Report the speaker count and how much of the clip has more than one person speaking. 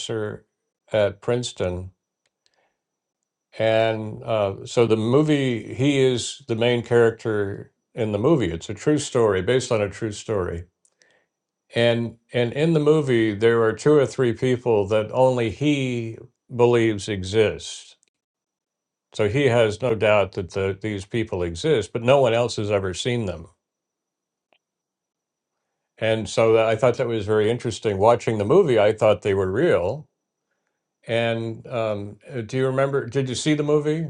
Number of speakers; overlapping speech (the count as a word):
one, no overlap